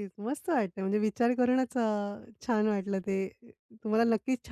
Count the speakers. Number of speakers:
1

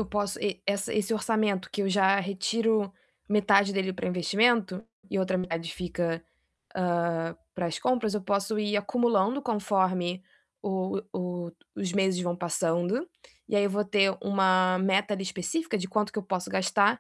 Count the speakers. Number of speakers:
1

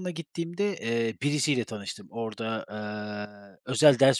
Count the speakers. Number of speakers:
1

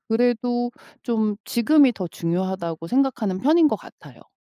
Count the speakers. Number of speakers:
1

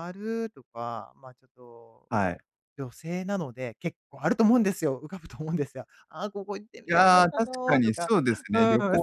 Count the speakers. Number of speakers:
2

